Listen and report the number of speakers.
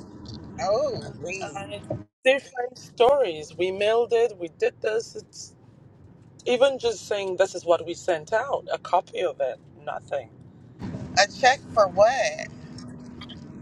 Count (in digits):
2